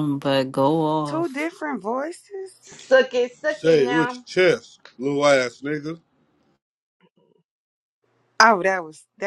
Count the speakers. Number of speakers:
four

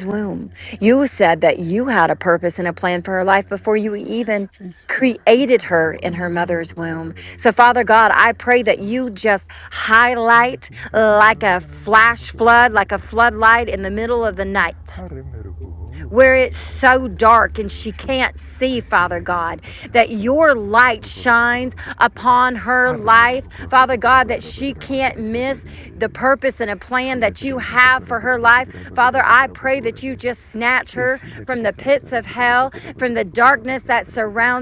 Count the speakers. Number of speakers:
one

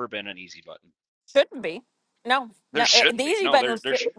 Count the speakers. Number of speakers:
two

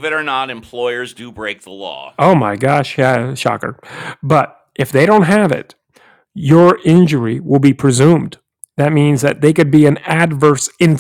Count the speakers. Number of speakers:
two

